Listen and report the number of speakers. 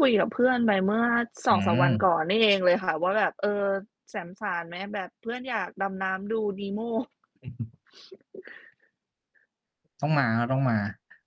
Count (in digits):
2